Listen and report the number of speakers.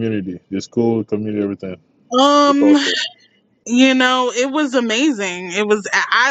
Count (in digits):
2